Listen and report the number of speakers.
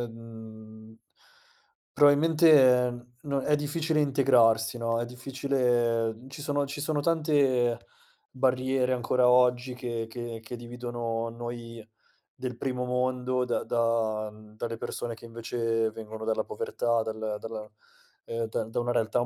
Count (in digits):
1